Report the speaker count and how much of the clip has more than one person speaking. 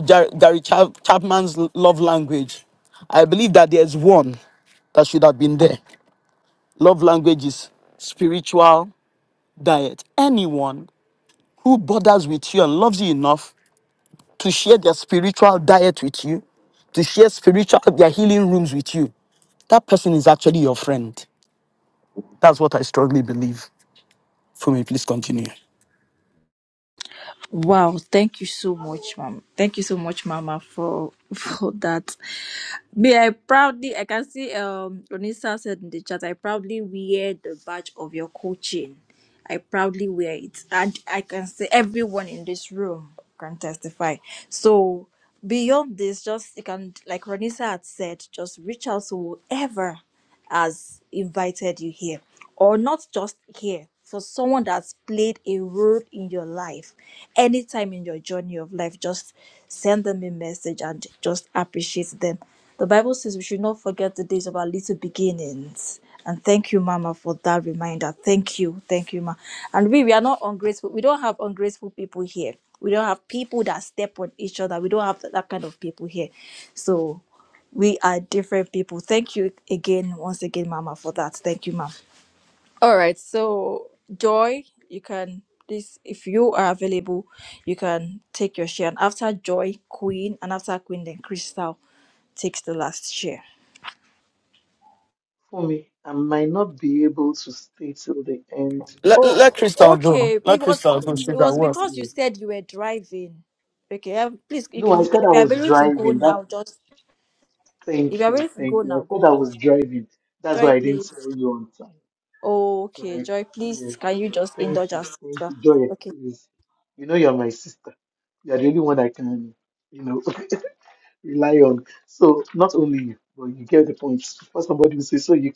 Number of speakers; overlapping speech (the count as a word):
three, about 6%